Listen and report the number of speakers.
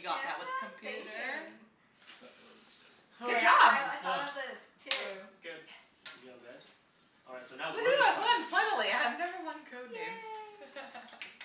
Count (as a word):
four